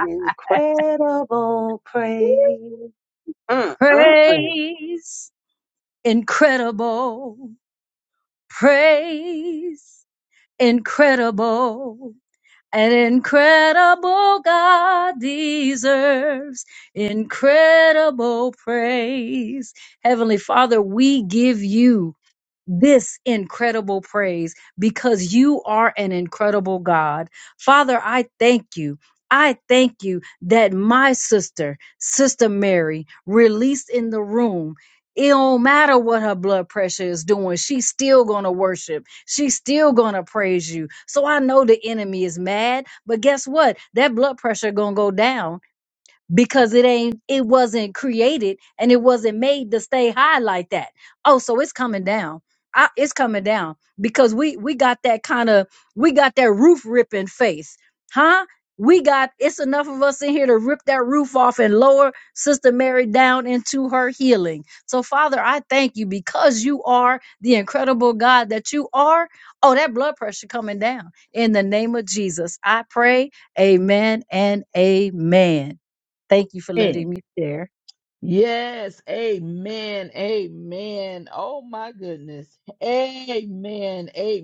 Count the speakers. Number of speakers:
three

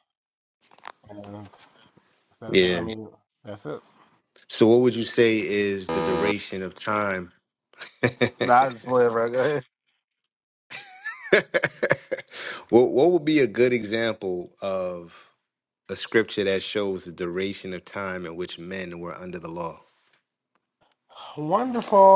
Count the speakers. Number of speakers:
three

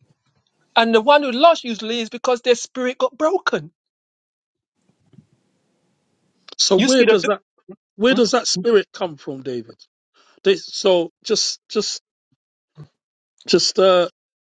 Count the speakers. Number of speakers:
two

